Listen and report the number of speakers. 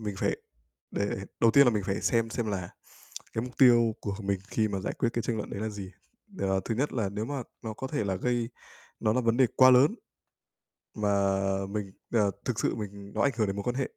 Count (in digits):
1